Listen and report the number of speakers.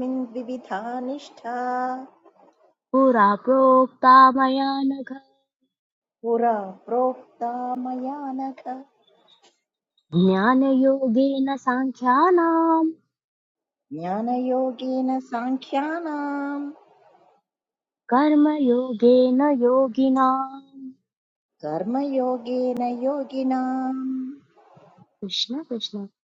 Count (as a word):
two